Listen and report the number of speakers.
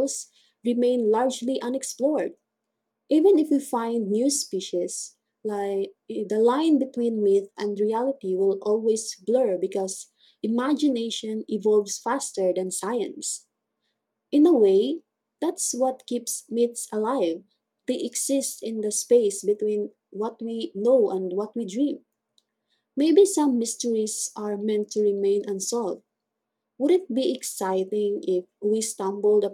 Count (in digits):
1